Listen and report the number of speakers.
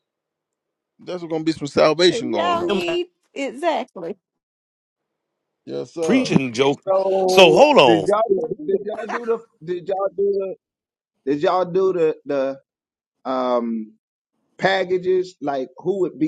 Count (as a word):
four